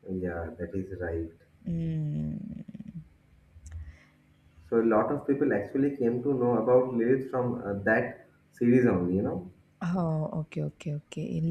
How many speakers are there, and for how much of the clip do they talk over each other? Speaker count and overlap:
2, no overlap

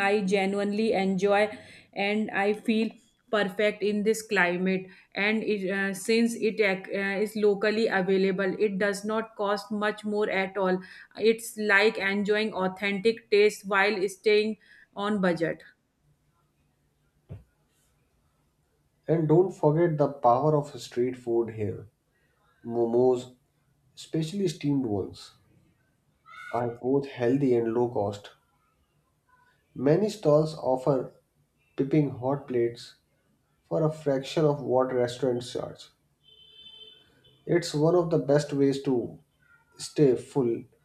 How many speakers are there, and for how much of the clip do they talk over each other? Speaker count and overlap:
2, no overlap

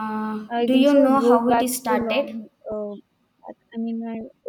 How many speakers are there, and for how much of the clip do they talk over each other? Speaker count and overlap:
2, about 43%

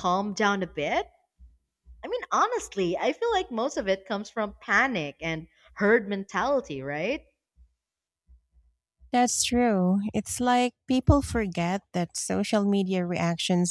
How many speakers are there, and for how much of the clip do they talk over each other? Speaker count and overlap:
2, no overlap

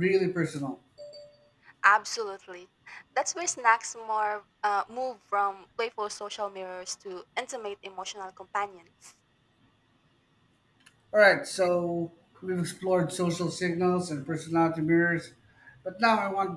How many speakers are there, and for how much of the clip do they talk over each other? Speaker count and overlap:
2, no overlap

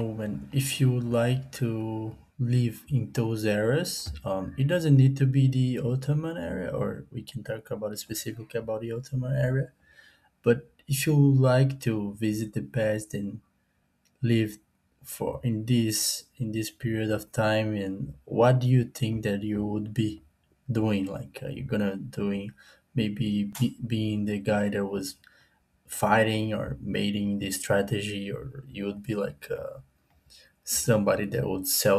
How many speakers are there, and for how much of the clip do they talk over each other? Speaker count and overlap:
1, no overlap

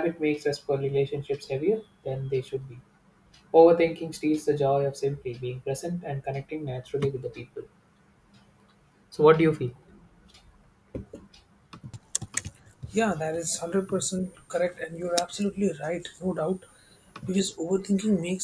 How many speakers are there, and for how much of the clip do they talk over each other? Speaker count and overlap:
2, no overlap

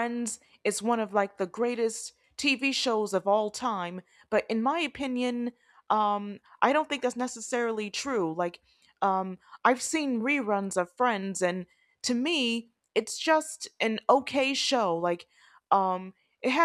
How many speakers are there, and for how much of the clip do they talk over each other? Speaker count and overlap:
1, no overlap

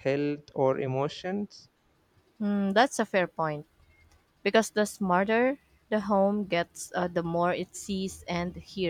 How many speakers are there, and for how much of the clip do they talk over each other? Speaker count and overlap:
2, no overlap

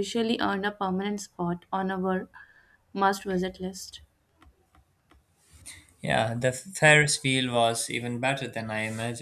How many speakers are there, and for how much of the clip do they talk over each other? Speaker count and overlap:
2, no overlap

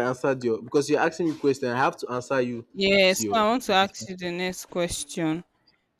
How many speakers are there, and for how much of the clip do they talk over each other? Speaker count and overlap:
2, about 15%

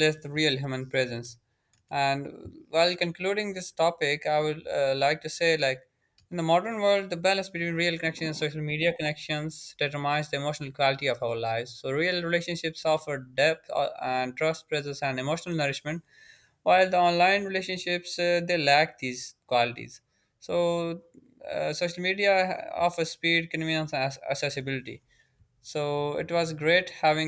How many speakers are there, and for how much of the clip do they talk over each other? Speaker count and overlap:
1, no overlap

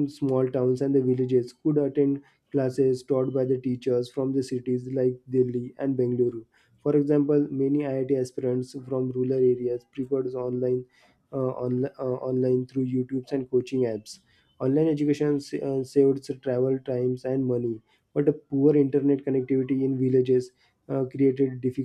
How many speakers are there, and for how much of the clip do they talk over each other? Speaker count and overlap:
1, no overlap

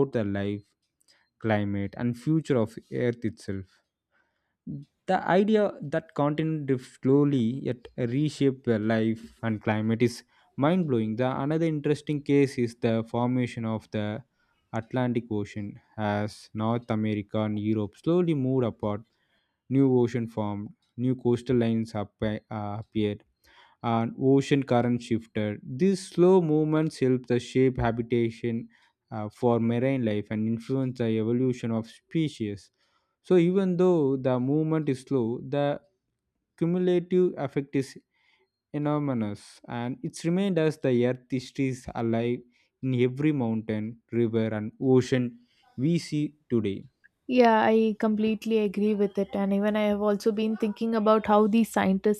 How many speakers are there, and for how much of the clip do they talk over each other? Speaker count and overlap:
2, no overlap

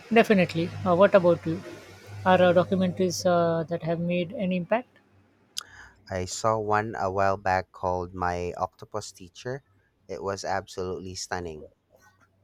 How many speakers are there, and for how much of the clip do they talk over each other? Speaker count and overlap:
2, no overlap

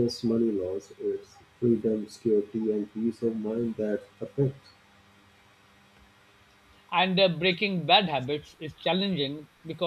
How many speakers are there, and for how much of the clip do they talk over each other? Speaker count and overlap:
2, no overlap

